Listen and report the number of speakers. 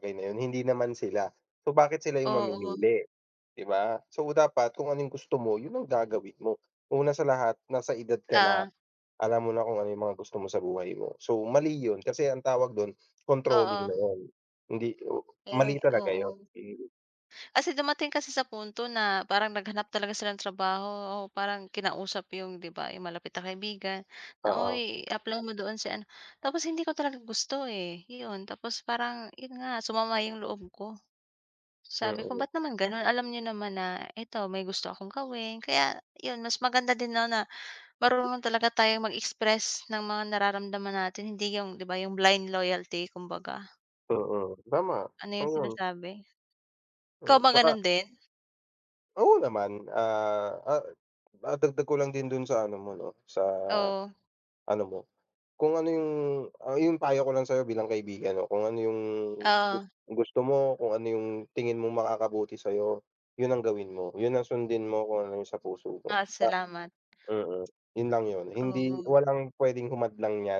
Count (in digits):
2